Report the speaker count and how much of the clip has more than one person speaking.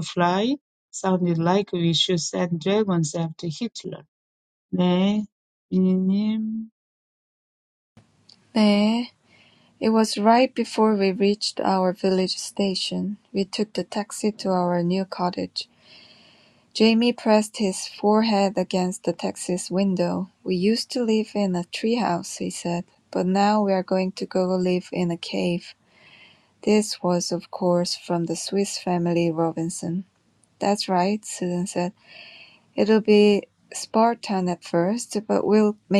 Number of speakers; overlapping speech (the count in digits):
2, no overlap